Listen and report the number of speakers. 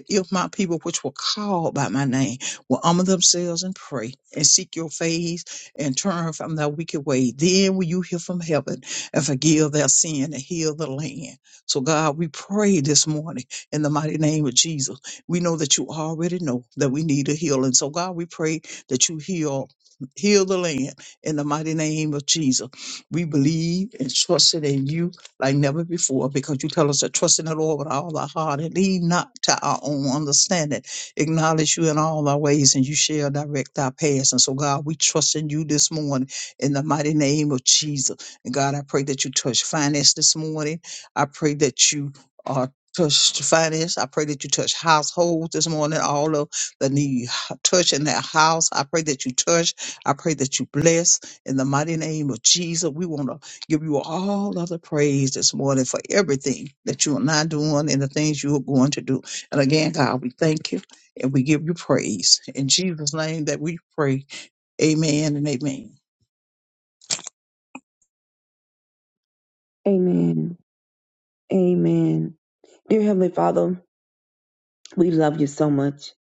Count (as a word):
two